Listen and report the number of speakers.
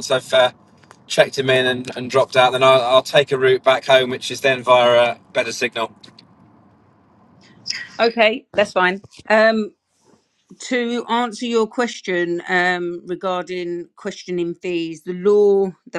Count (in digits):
2